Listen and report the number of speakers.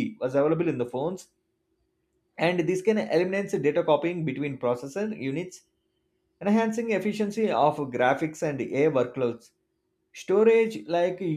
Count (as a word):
one